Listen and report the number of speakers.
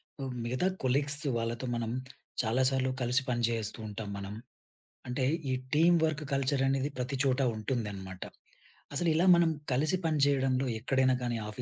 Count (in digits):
1